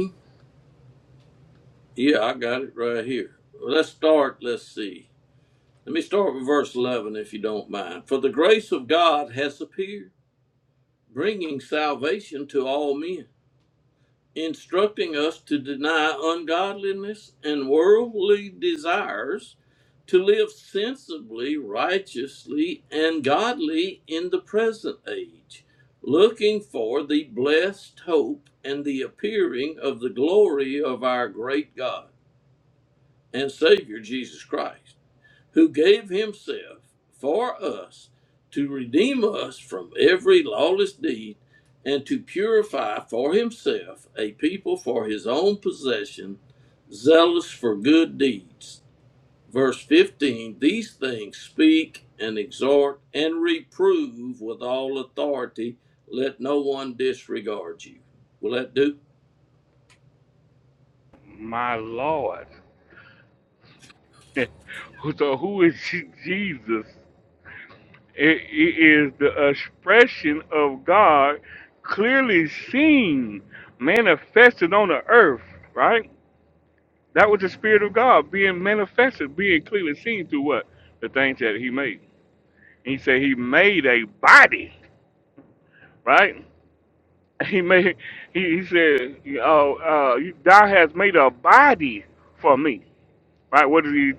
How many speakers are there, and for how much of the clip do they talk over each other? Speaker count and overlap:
2, no overlap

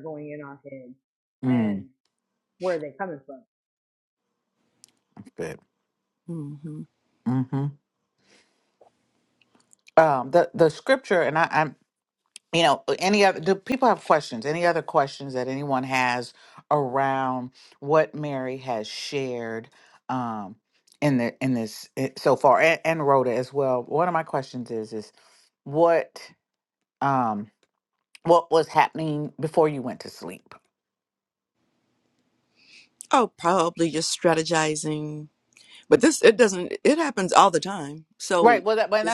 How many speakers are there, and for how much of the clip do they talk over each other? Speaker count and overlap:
3, about 2%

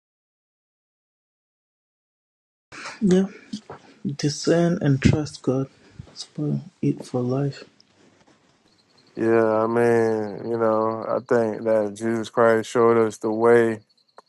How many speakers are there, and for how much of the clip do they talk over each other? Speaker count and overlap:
2, no overlap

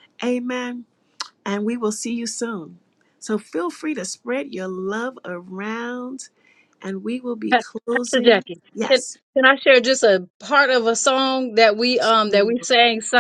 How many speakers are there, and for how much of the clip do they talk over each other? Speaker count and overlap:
2, about 9%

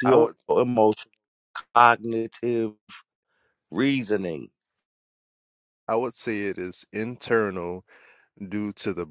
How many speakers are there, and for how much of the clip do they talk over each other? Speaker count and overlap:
2, about 3%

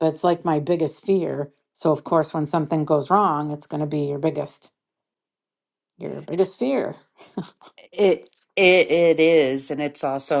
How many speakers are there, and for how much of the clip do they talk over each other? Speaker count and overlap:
2, no overlap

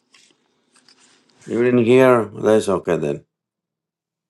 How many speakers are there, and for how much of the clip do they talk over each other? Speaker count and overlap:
1, no overlap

